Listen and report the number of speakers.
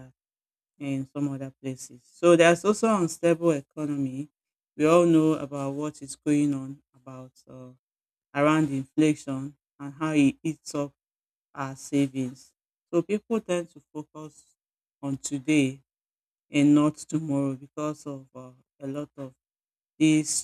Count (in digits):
1